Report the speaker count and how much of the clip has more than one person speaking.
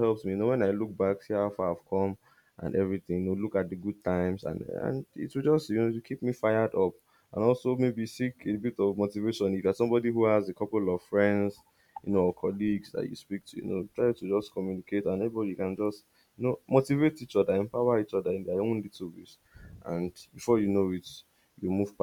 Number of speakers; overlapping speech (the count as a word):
one, no overlap